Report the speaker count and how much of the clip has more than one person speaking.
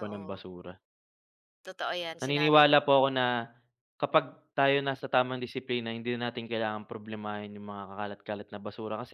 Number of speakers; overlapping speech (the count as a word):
two, about 11%